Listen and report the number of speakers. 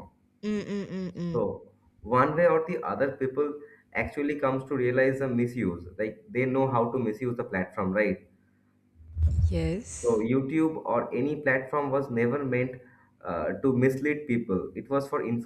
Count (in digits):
2